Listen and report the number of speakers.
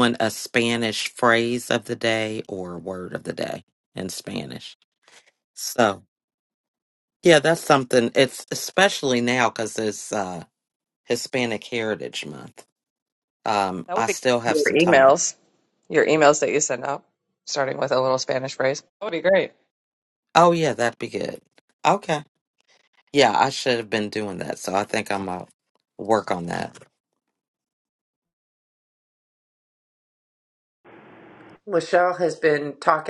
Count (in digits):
3